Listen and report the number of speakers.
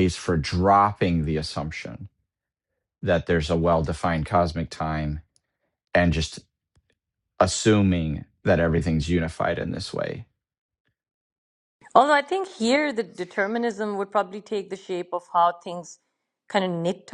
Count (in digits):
2